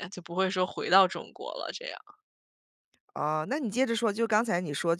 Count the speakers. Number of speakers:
2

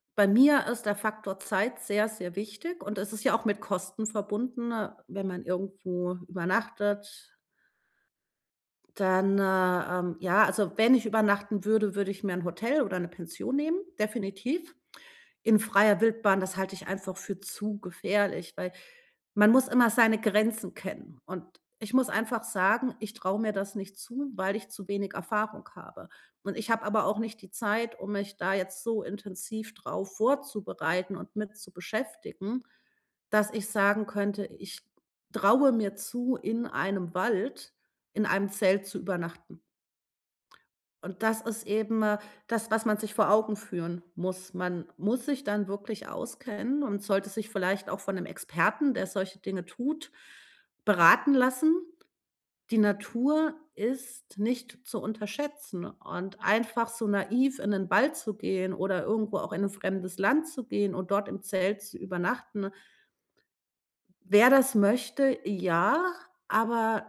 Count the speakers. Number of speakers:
1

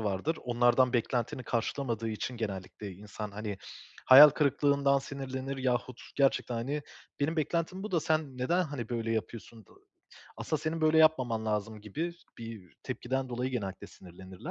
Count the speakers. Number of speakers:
1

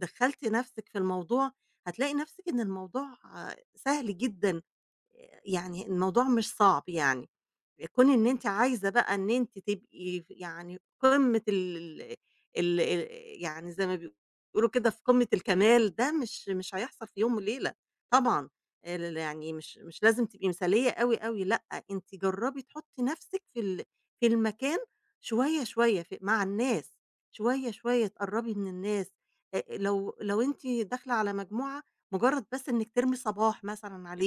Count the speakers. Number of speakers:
1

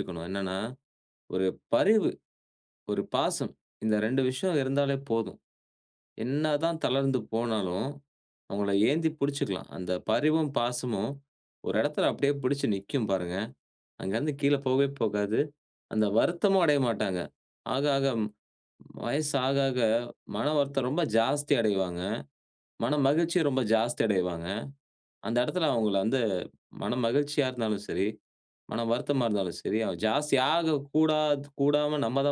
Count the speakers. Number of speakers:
1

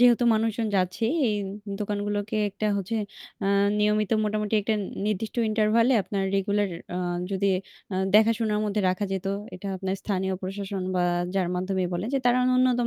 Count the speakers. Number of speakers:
1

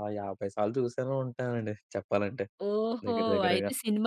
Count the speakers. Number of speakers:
2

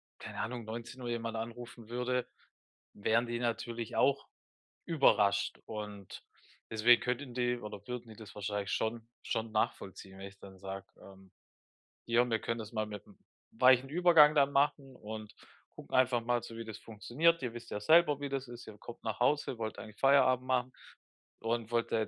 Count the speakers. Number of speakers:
1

